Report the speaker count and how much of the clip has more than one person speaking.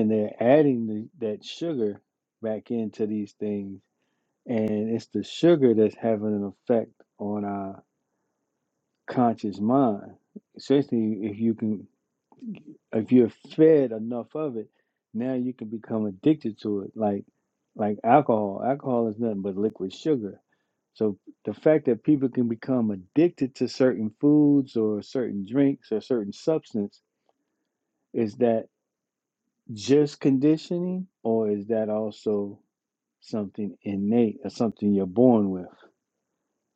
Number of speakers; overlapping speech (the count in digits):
1, no overlap